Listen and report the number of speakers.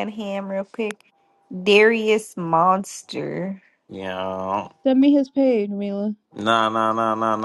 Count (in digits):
3